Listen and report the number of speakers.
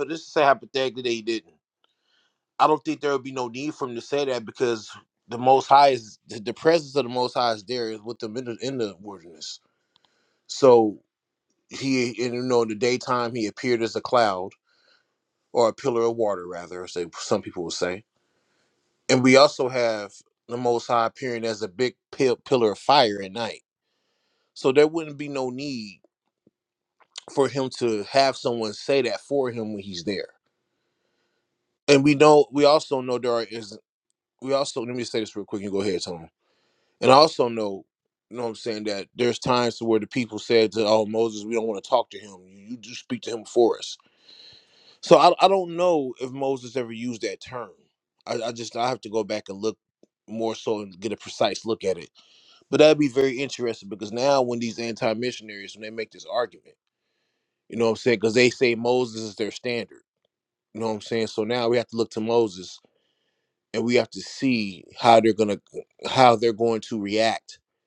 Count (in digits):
1